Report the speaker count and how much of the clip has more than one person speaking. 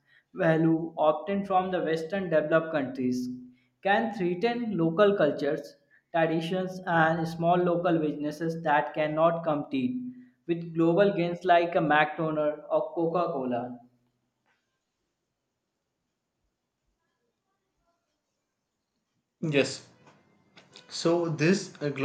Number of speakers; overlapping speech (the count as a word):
two, no overlap